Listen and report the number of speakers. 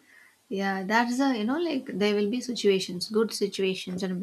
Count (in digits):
1